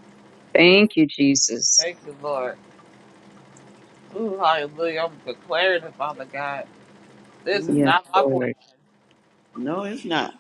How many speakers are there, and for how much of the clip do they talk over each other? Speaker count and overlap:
3, about 9%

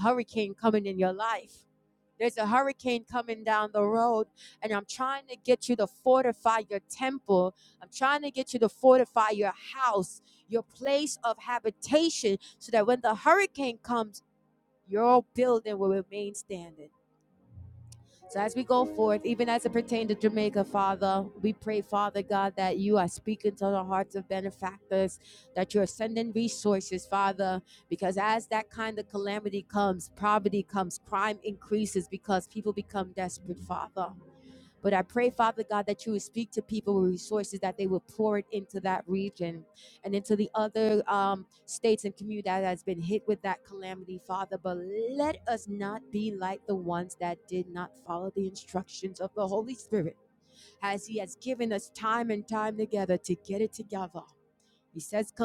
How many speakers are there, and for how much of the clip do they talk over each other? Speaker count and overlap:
1, no overlap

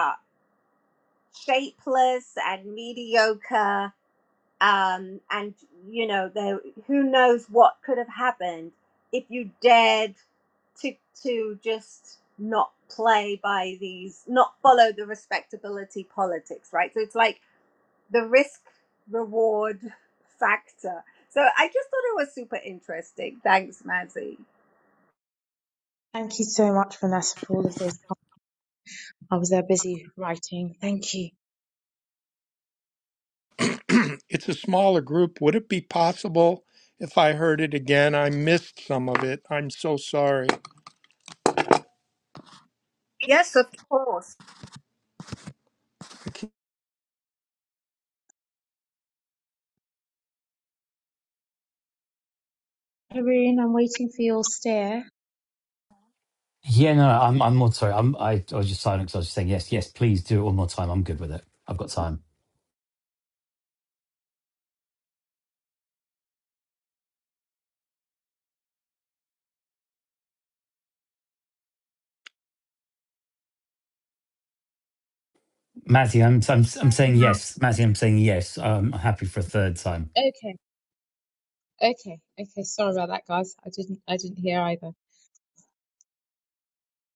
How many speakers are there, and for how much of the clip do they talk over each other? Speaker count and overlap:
4, under 1%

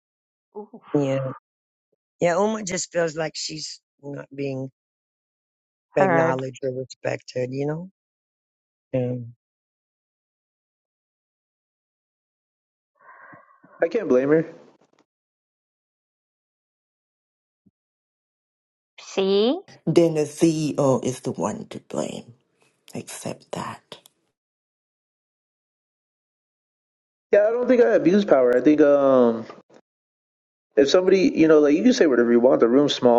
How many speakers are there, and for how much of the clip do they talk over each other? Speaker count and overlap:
4, about 1%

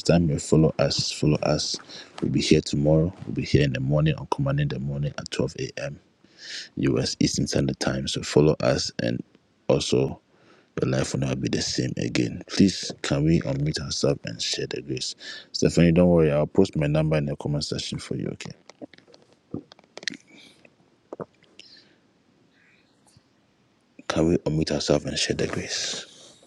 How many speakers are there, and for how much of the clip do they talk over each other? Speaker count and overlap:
1, no overlap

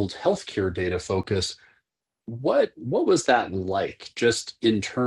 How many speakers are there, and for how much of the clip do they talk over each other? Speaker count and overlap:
1, no overlap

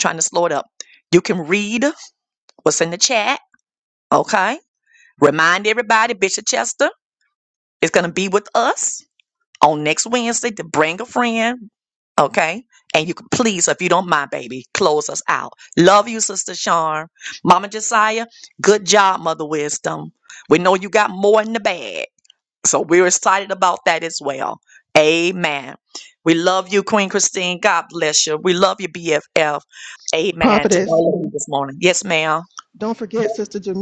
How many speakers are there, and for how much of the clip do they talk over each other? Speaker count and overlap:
2, about 1%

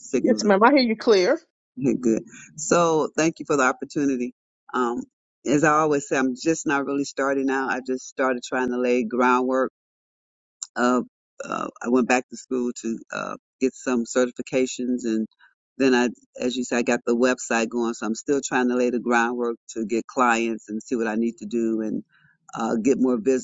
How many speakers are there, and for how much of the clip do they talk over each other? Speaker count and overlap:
2, about 1%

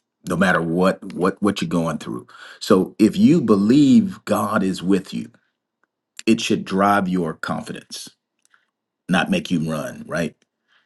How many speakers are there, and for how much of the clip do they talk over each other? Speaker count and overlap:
1, no overlap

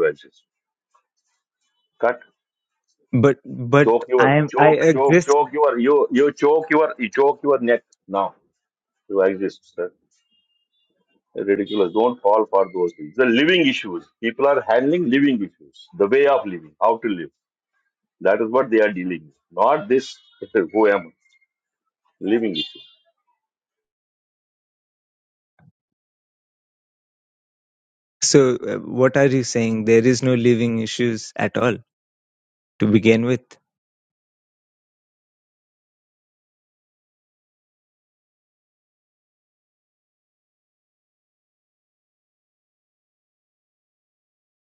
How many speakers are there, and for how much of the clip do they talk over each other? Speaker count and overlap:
2, about 3%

